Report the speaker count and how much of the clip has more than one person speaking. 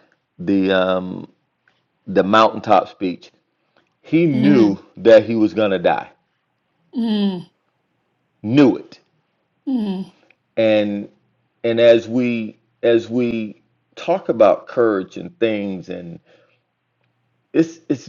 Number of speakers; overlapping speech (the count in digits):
2, about 2%